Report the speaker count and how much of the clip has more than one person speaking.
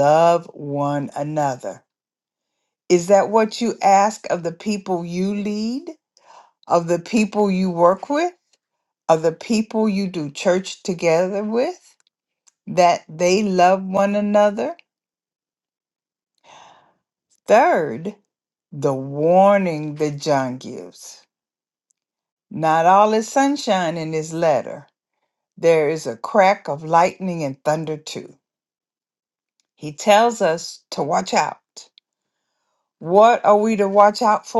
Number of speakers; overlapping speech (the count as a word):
one, no overlap